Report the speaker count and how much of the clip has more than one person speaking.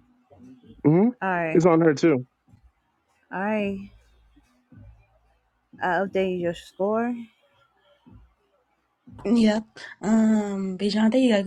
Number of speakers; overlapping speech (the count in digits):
3, about 1%